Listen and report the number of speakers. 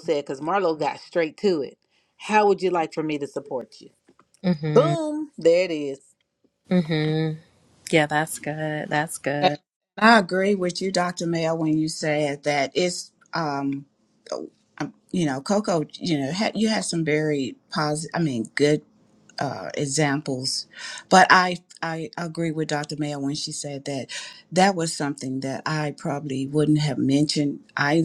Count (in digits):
3